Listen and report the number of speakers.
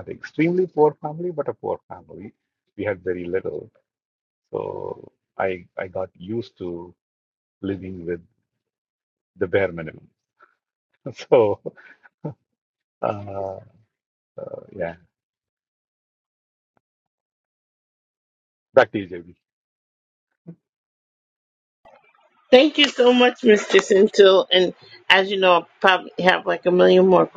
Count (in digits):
2